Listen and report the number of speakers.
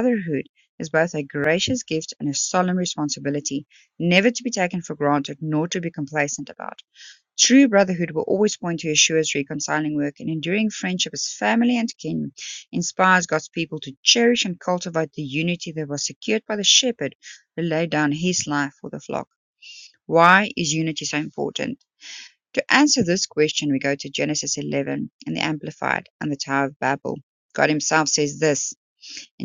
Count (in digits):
1